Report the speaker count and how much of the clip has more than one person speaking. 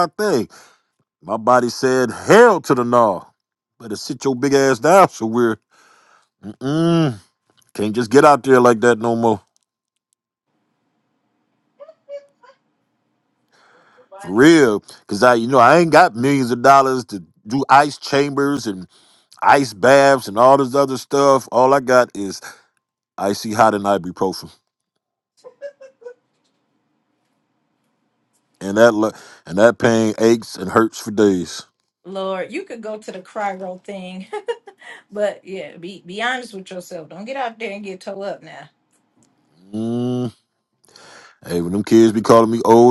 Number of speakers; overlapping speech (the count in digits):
2, no overlap